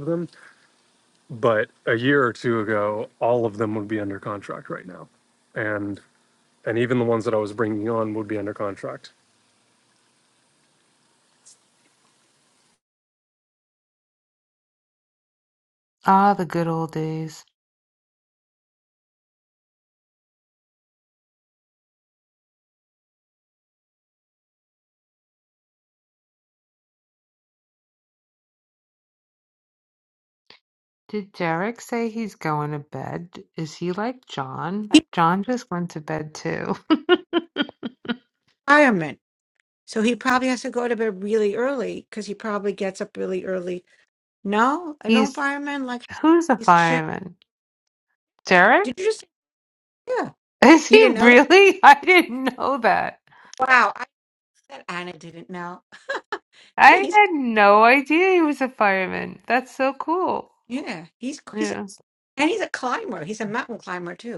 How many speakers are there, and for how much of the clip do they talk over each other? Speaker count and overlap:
three, about 3%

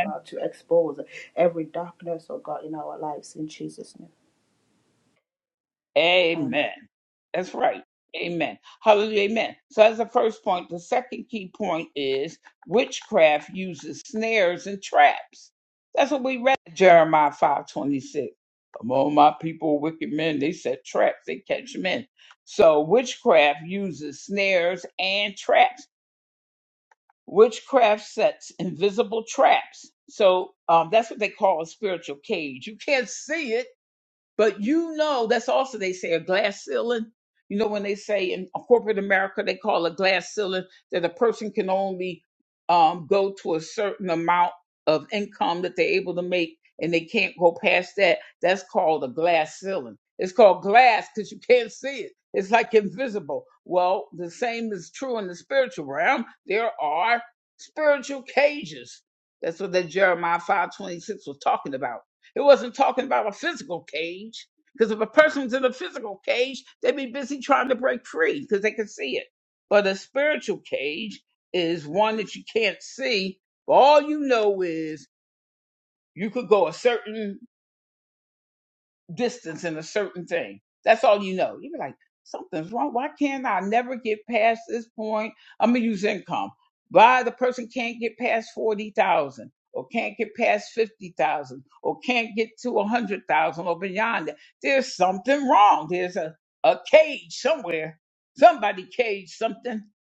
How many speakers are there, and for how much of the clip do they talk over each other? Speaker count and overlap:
two, under 1%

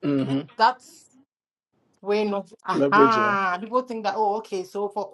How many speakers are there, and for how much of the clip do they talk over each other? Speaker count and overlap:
two, about 12%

